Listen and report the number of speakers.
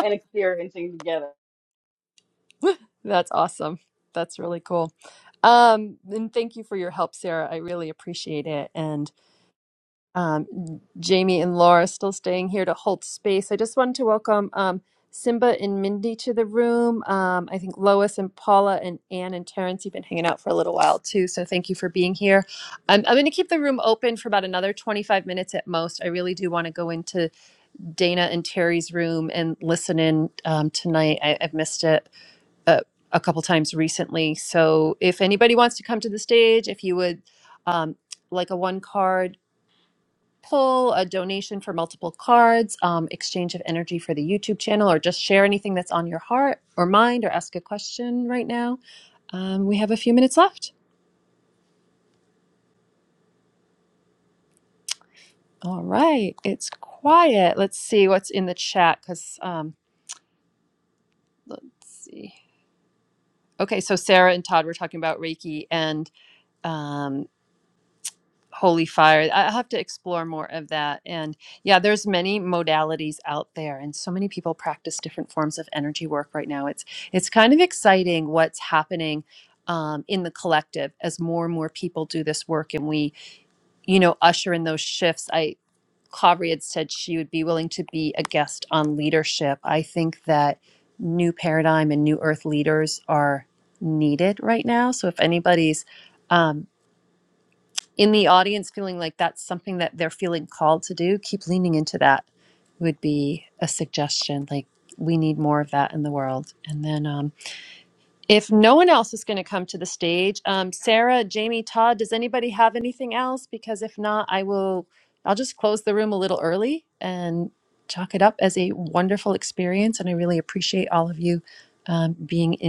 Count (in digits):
2